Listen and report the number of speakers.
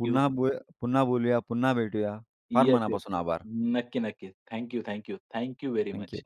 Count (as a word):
two